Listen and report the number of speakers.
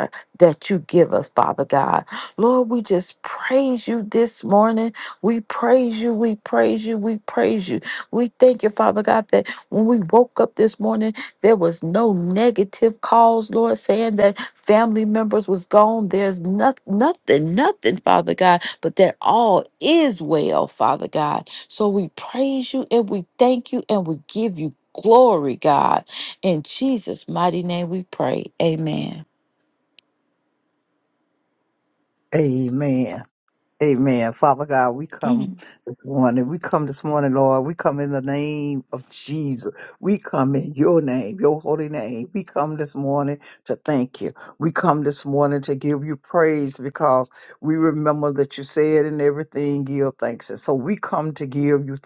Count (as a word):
two